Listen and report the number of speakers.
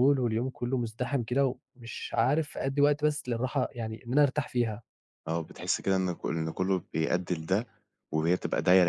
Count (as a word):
two